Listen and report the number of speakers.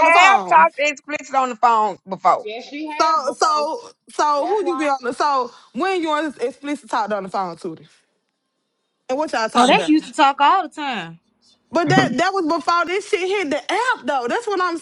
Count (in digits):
4